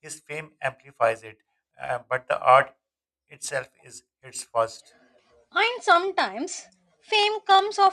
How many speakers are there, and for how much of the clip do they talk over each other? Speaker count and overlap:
two, no overlap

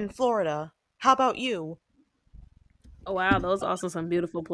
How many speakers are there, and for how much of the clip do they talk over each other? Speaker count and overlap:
two, no overlap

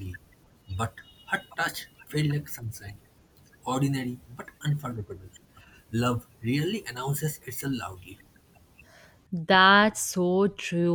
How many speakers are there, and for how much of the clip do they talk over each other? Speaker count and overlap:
two, no overlap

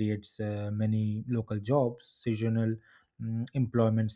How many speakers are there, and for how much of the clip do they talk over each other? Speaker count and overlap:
one, no overlap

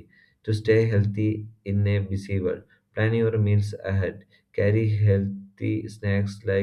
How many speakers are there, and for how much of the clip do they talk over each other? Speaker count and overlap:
one, no overlap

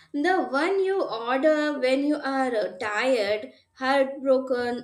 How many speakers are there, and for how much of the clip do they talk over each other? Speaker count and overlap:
one, no overlap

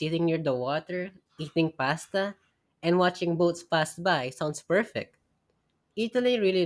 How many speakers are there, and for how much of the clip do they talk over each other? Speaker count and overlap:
one, no overlap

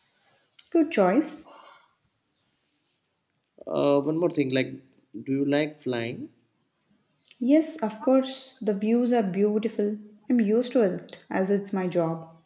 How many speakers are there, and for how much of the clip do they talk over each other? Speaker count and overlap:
two, no overlap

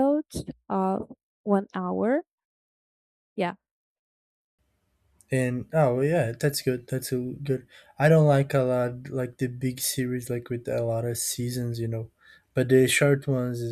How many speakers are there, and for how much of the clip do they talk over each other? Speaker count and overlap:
two, no overlap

